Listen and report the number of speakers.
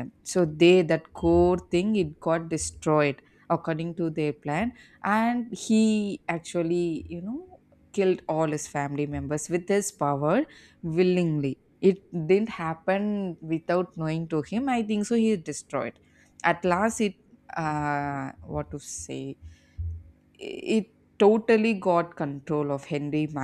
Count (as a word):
one